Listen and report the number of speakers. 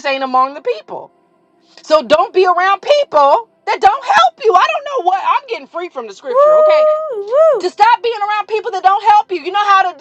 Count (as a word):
two